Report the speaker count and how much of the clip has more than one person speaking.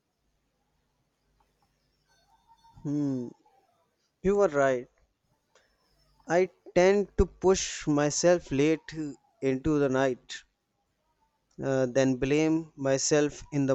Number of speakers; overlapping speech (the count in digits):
1, no overlap